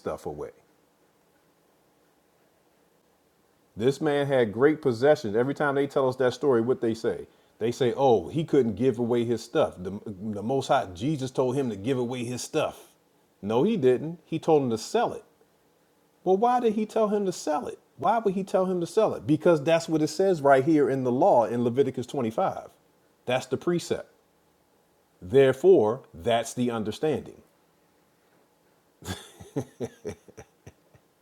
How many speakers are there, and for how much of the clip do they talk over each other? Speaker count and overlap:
1, no overlap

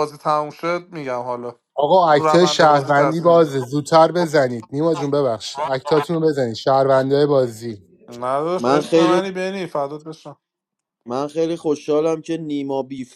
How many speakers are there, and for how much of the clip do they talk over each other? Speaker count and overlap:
3, about 16%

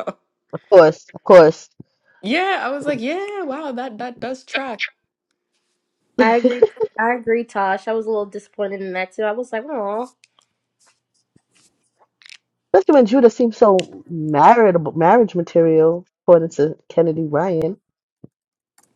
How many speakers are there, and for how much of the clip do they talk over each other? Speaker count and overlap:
3, about 2%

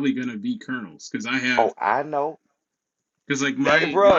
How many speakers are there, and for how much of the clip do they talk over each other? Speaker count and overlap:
2, about 16%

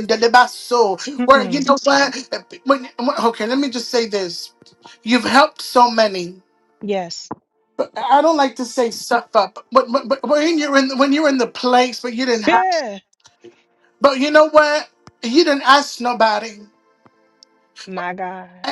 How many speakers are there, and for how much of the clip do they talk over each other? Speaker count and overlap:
2, about 4%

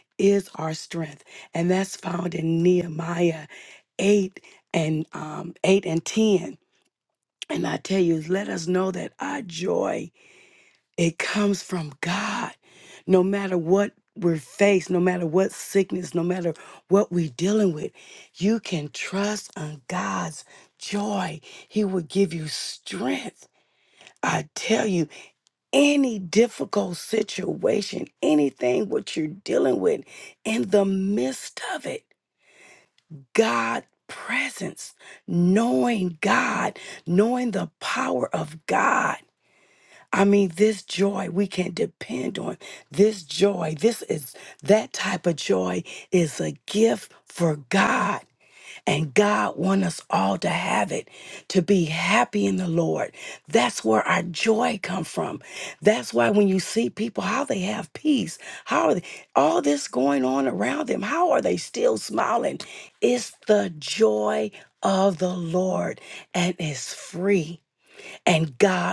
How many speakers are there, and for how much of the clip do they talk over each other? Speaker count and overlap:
1, no overlap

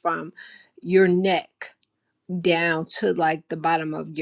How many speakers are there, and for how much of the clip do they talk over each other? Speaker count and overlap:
1, no overlap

